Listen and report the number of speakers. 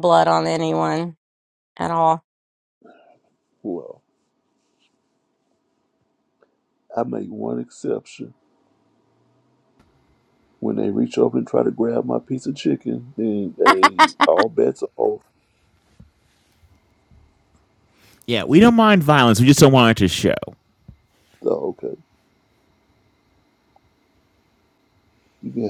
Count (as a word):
three